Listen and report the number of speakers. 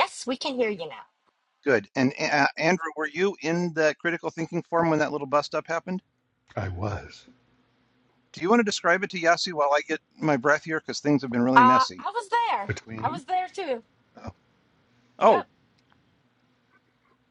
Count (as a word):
three